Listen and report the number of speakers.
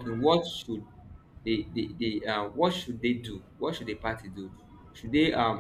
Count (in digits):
1